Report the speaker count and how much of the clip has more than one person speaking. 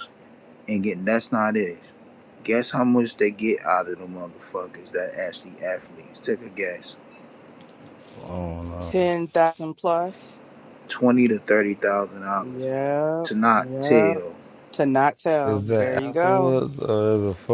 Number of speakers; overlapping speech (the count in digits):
3, about 13%